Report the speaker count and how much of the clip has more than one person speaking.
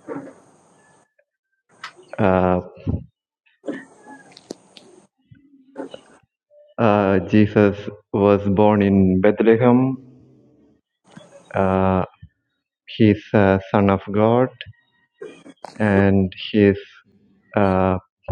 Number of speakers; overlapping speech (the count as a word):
one, no overlap